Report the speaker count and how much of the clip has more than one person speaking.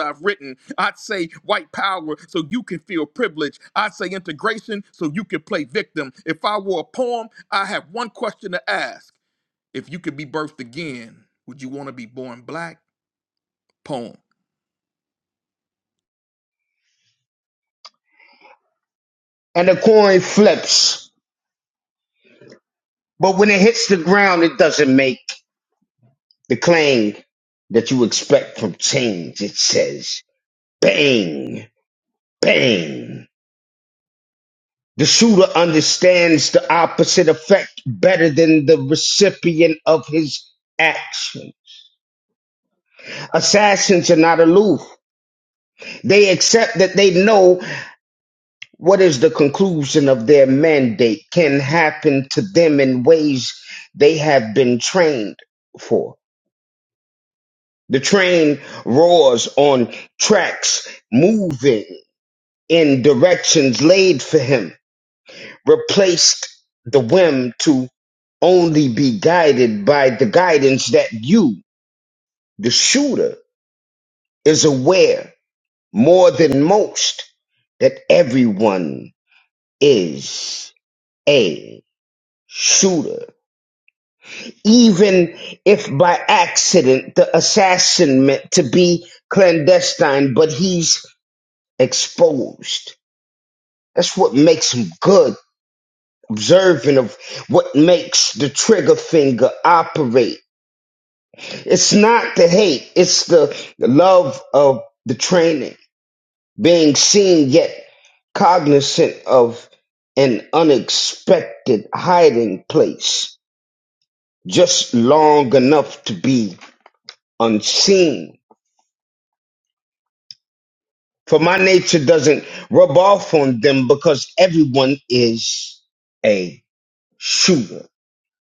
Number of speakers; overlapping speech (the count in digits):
2, no overlap